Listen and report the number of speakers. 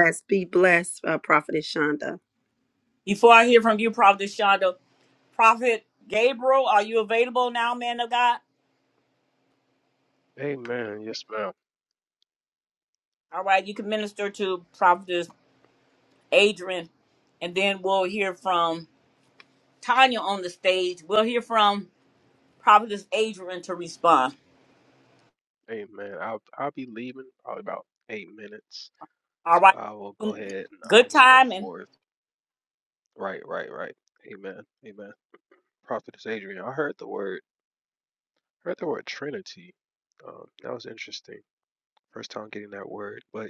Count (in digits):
3